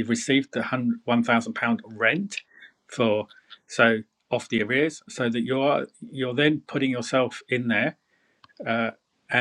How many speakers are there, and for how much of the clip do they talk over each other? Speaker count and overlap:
1, no overlap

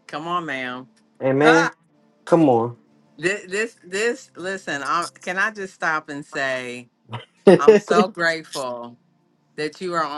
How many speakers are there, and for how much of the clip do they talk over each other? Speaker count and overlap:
2, about 7%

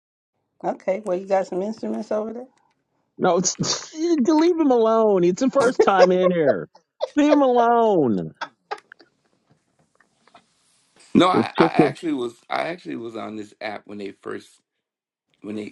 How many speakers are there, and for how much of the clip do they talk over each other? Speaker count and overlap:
3, about 4%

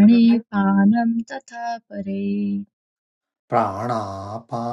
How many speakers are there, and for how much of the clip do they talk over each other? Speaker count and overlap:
2, no overlap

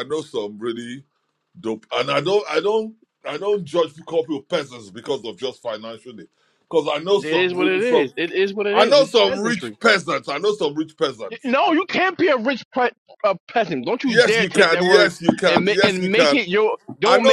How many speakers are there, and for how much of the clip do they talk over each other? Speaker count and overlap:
2, about 24%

